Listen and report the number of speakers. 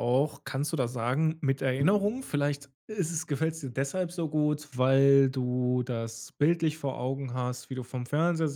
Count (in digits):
1